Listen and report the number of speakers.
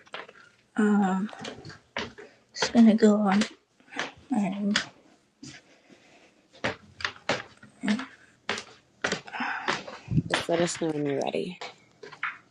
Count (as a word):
two